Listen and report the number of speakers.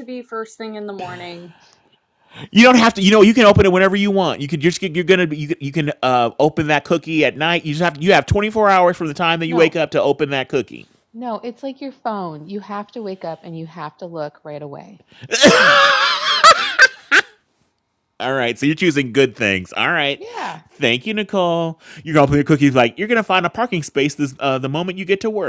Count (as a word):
three